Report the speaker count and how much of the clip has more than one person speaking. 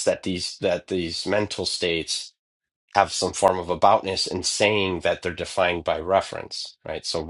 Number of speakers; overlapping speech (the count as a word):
one, no overlap